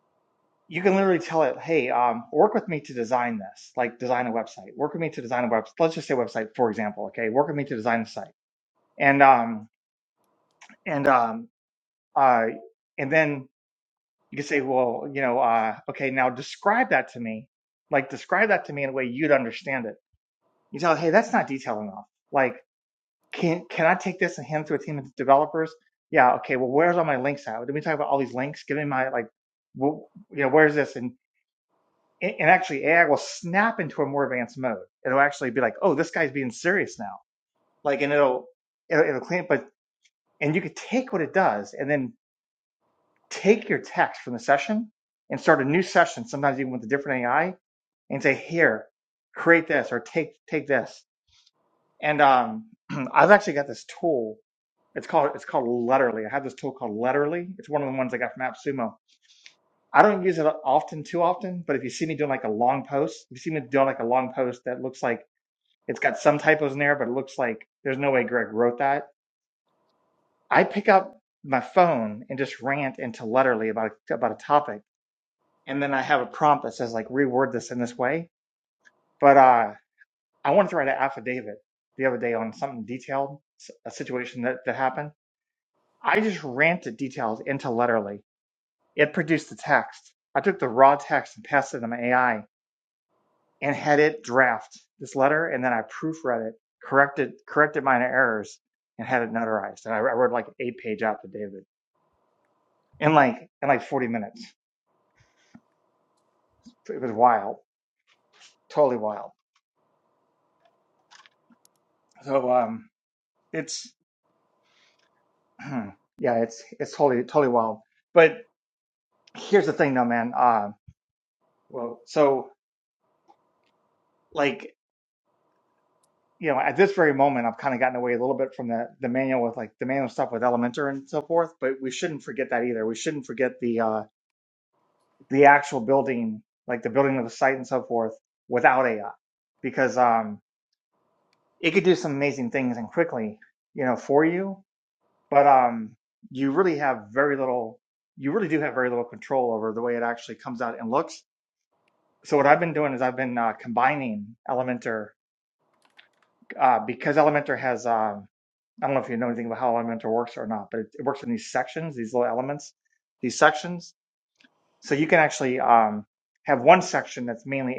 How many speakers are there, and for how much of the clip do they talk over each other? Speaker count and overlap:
one, no overlap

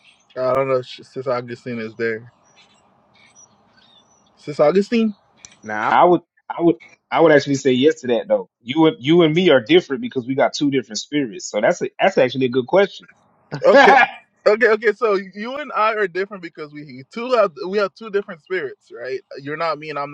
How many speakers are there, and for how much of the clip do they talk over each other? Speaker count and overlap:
two, about 1%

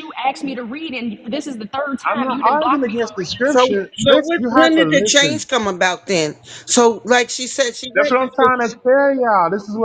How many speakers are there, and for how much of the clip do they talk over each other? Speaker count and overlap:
three, about 36%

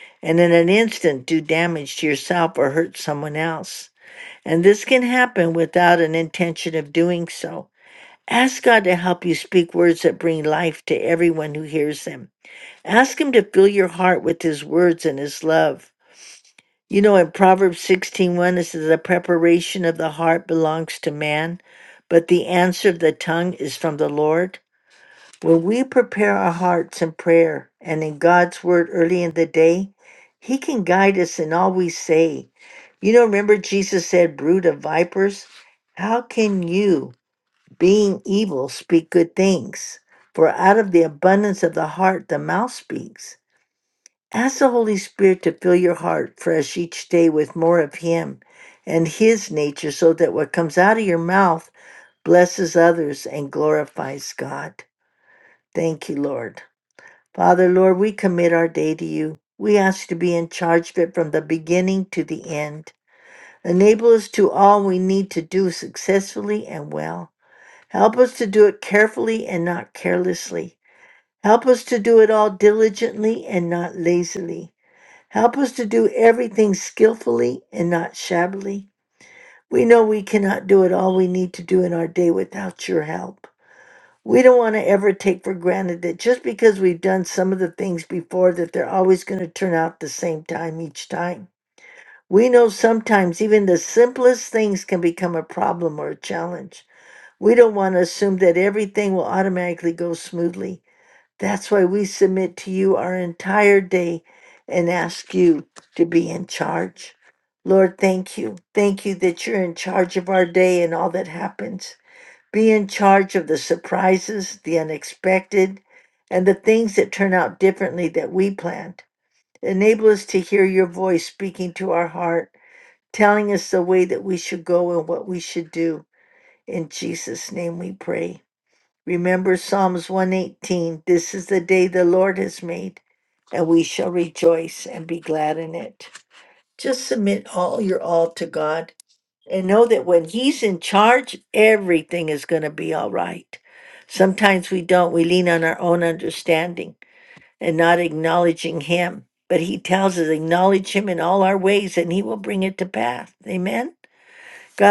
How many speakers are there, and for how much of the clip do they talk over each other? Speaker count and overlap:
one, no overlap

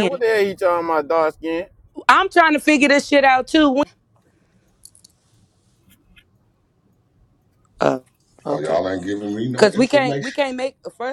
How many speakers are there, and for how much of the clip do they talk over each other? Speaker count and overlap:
three, about 12%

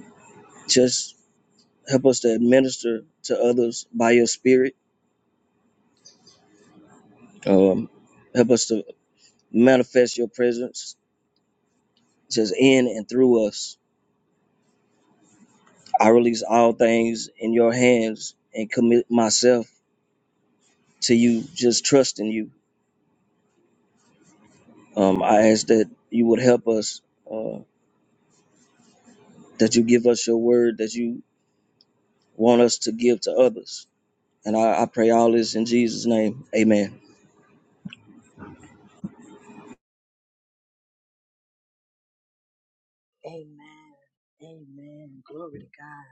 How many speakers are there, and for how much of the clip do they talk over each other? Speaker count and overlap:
two, no overlap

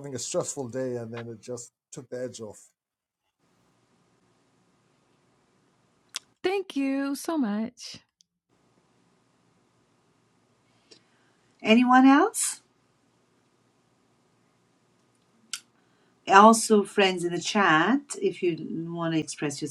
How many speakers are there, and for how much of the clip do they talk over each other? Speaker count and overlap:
three, no overlap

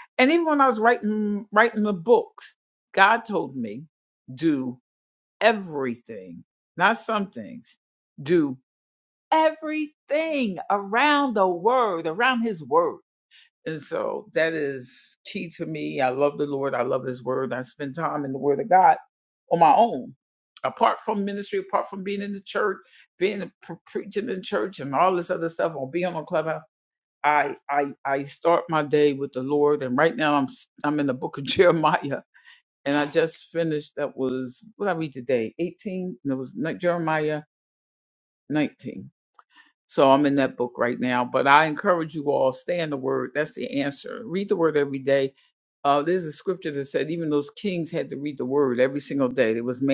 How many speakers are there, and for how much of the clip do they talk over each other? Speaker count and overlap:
one, no overlap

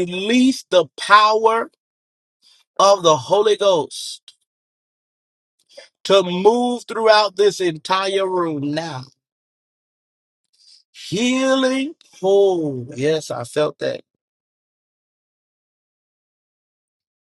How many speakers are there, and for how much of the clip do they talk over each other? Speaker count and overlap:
one, no overlap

